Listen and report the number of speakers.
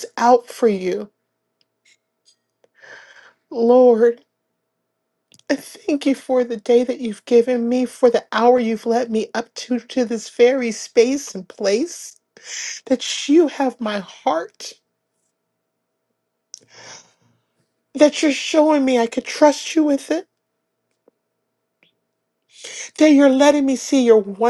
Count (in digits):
1